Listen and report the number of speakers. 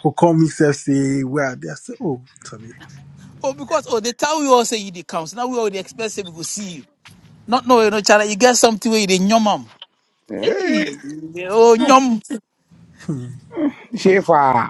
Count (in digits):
3